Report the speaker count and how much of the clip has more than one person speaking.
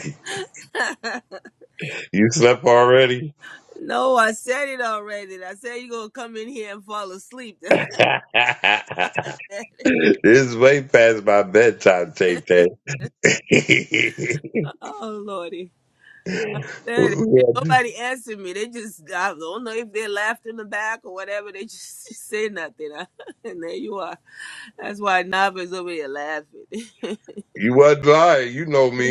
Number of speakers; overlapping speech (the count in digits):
2, no overlap